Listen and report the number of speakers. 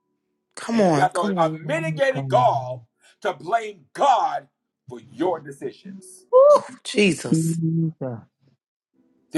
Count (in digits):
3